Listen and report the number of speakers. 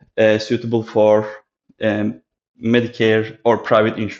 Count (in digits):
1